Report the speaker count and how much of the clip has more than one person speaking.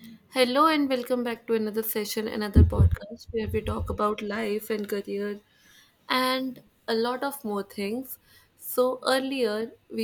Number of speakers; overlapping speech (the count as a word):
one, no overlap